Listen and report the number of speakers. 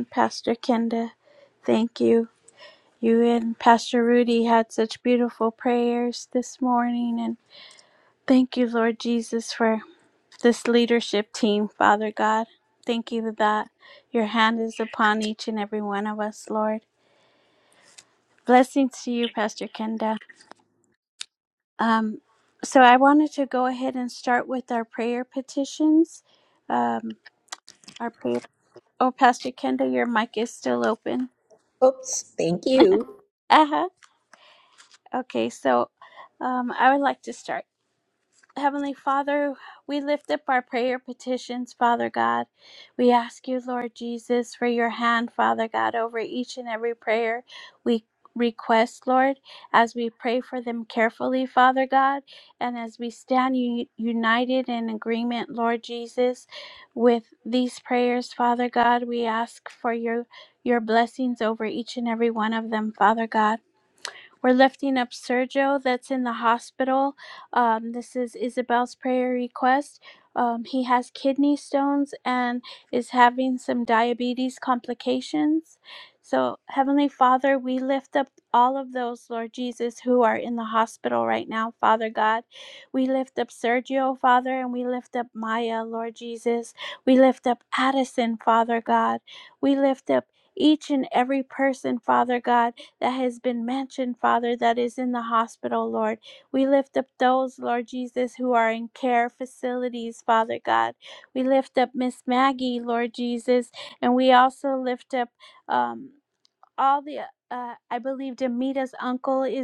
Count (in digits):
2